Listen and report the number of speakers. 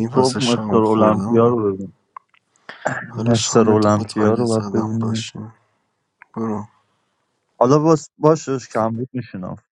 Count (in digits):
2